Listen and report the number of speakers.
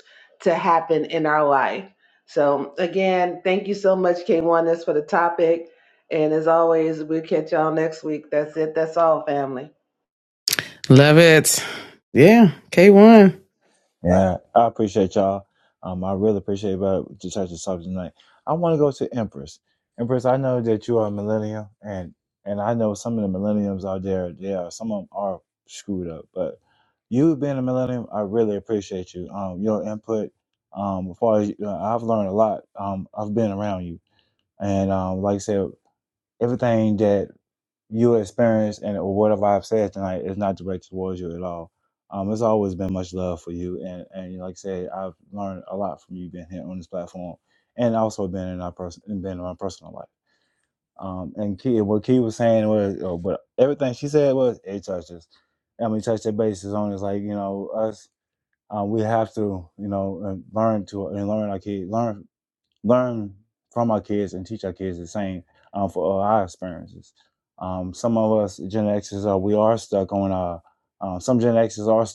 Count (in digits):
3